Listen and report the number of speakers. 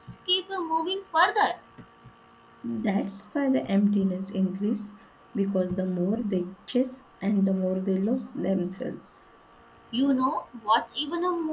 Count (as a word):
two